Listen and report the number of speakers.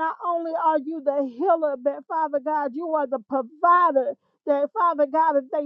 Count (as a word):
one